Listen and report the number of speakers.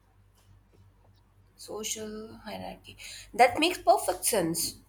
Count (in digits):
1